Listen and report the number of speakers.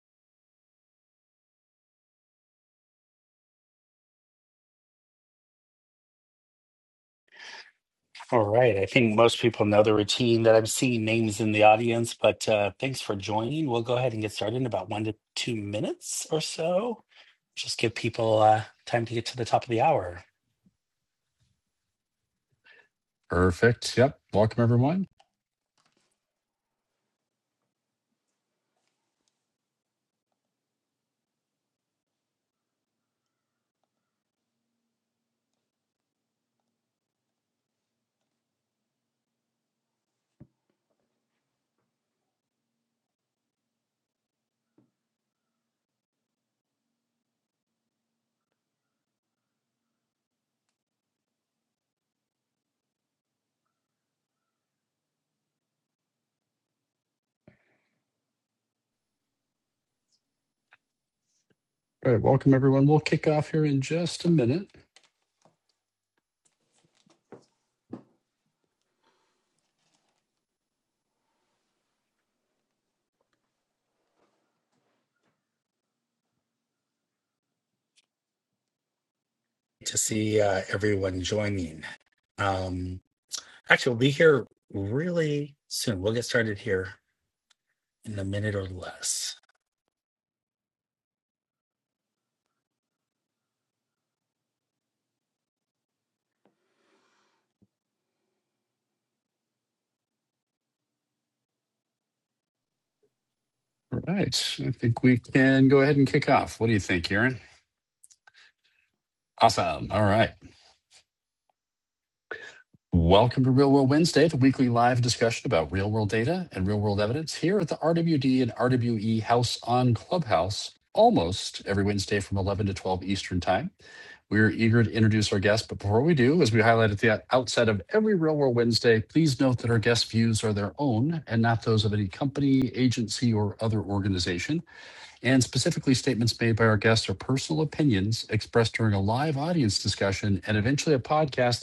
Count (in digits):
2